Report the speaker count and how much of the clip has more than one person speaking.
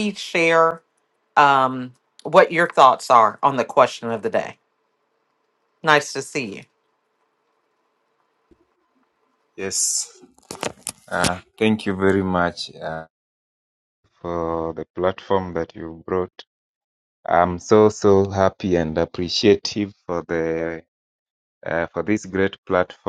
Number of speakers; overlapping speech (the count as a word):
two, no overlap